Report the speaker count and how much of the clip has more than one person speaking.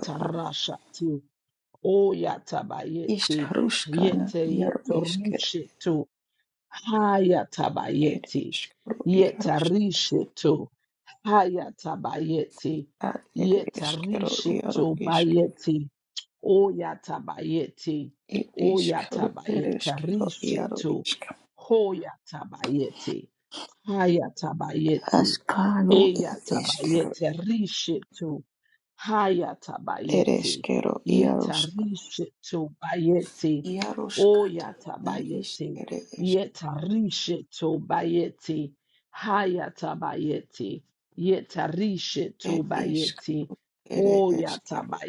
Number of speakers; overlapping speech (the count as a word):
two, about 23%